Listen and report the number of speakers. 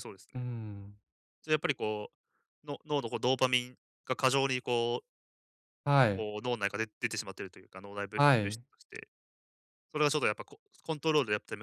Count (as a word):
two